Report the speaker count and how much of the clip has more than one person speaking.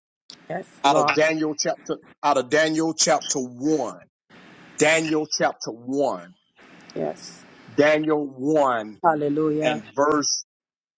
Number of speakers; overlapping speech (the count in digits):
2, about 4%